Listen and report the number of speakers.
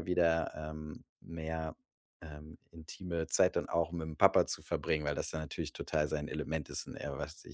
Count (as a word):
one